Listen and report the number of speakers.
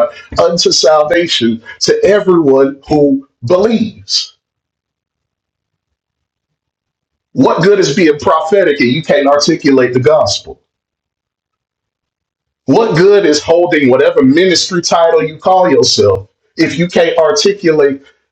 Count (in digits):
1